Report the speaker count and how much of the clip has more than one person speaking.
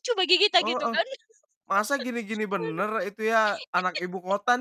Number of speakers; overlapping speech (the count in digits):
2, about 14%